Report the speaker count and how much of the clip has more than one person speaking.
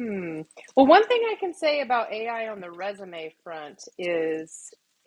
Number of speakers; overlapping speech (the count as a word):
one, no overlap